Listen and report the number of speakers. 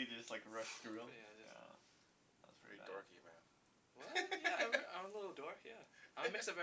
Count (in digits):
3